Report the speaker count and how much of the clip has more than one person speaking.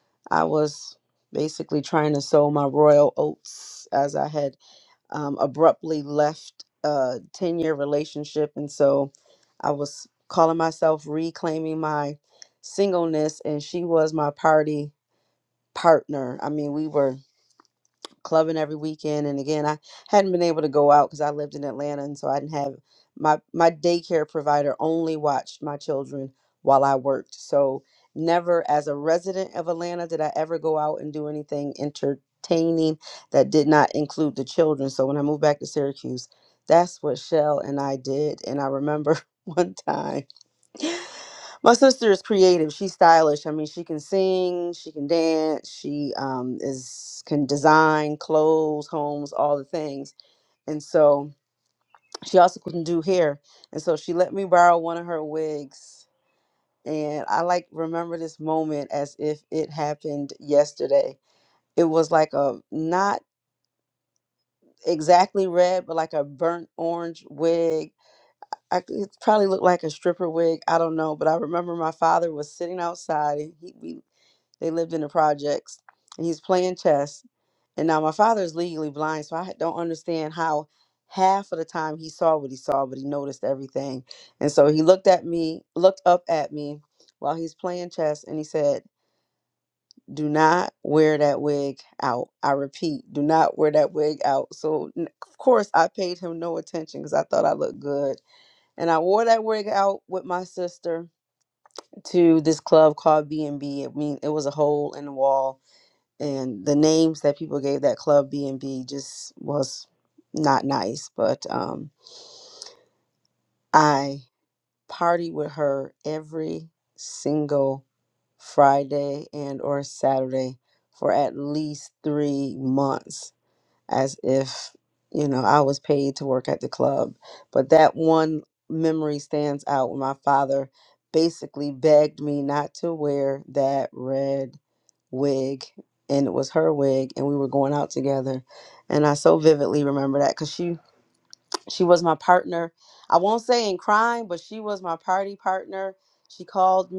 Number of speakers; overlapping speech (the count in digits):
1, no overlap